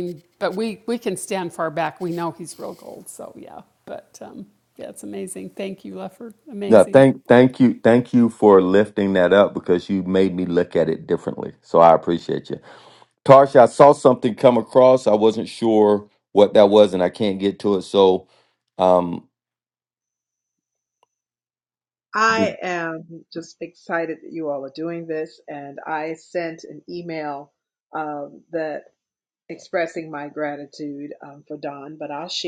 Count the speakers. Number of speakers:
3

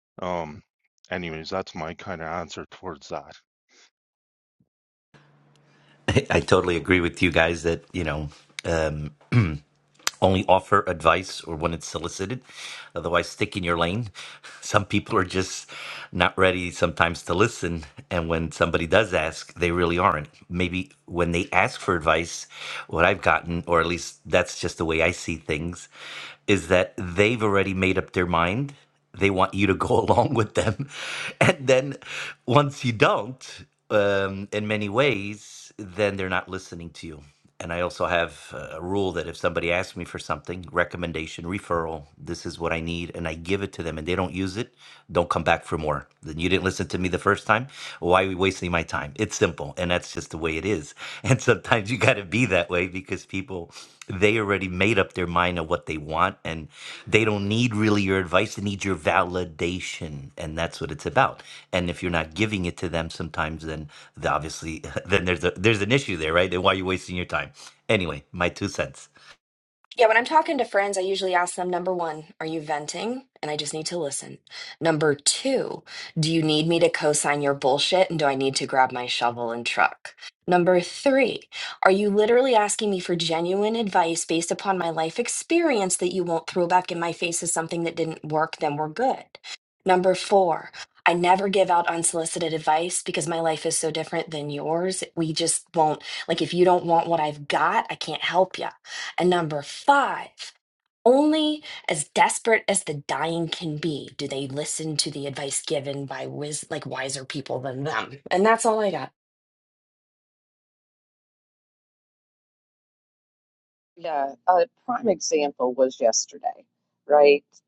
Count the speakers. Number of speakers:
4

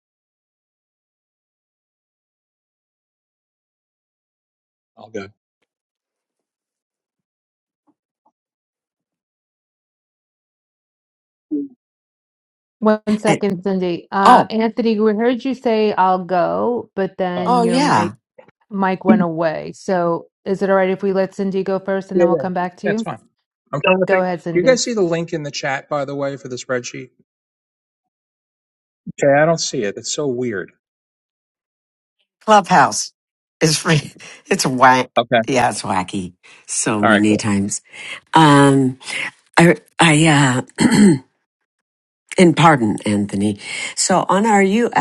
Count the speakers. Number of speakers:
3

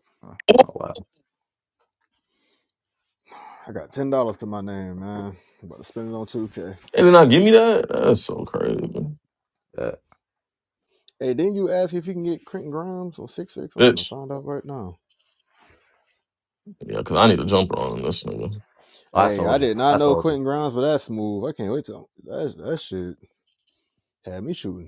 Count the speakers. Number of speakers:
3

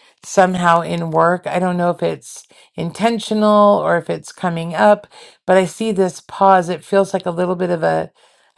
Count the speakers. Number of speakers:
1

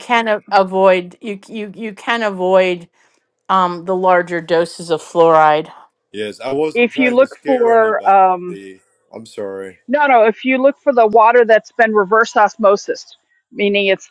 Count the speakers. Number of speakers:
3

